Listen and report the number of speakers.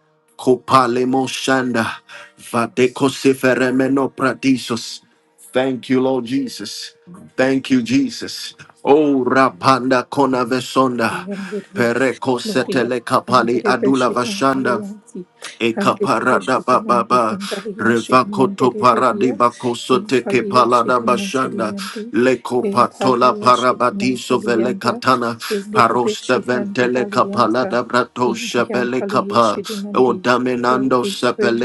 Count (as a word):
two